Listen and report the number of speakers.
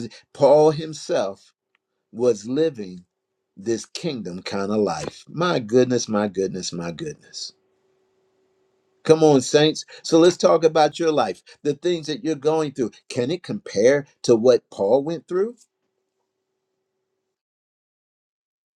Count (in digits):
1